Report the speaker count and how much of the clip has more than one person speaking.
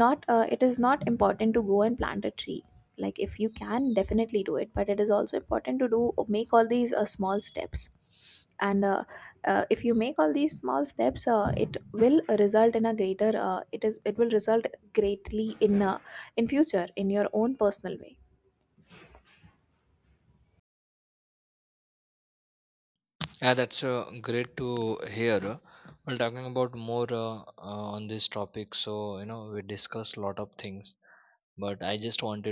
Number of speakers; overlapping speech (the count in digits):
2, no overlap